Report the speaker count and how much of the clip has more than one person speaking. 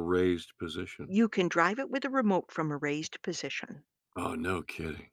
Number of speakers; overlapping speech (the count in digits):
2, no overlap